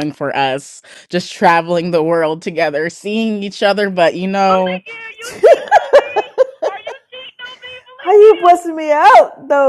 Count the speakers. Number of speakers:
3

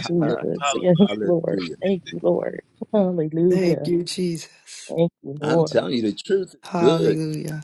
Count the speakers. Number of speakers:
3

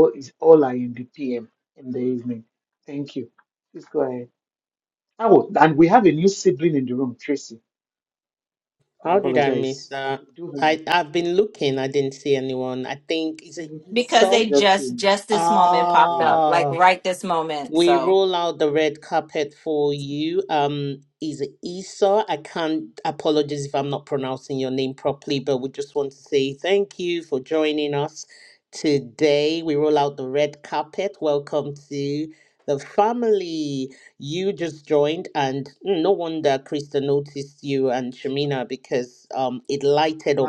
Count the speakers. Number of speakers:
3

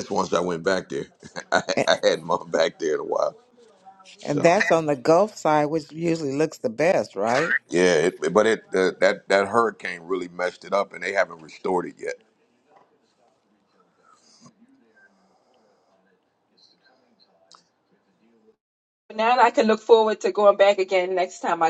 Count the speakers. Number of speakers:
3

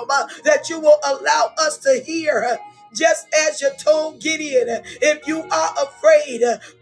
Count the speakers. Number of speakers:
1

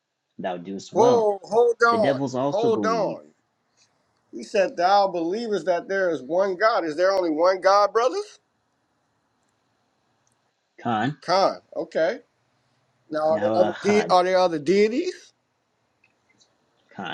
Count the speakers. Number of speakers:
2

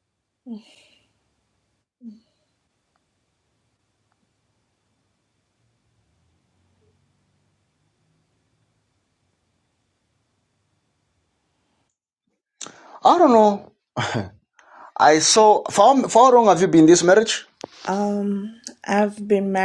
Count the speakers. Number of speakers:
2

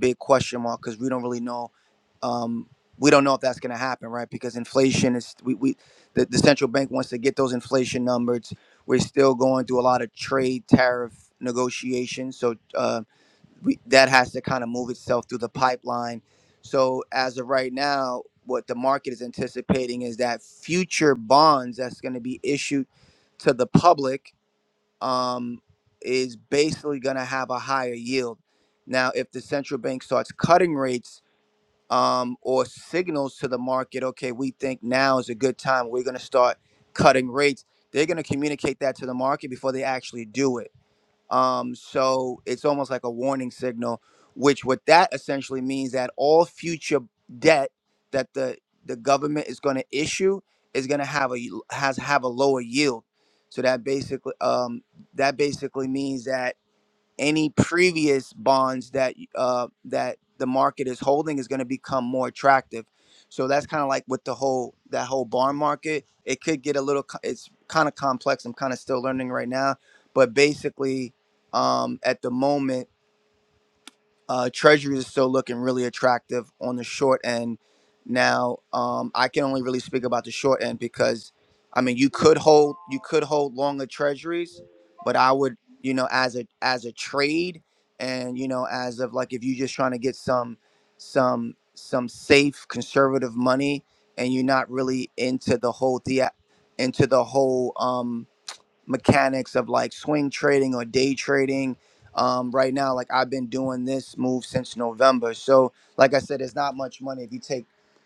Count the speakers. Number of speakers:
1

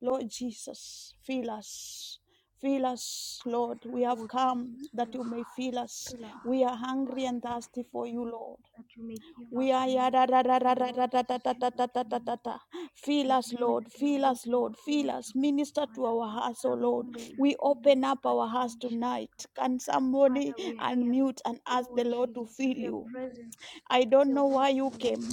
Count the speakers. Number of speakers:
2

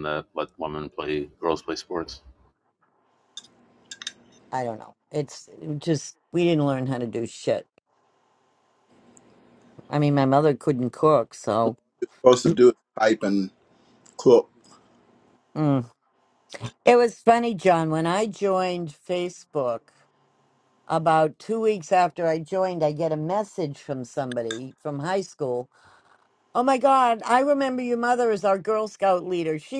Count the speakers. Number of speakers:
3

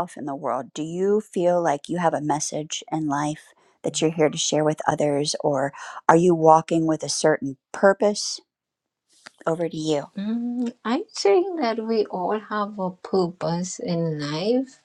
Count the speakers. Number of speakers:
2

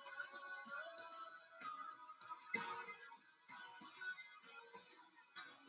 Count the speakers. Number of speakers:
0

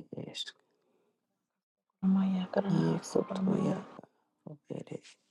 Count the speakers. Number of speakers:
2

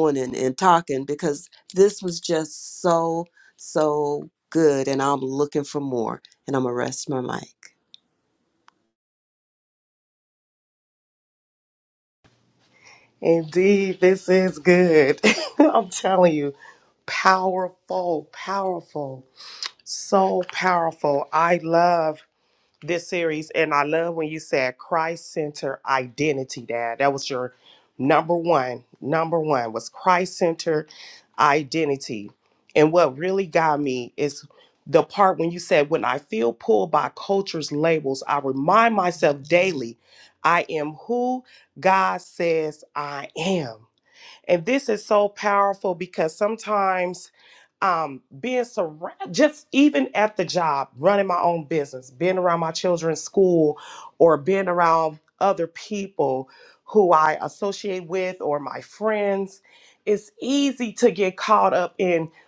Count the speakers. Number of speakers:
2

